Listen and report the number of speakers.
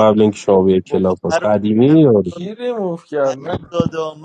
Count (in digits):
3